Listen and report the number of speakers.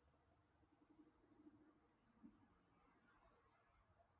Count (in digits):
0